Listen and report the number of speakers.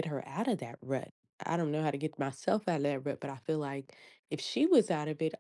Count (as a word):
one